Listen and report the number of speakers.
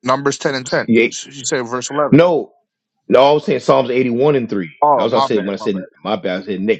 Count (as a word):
two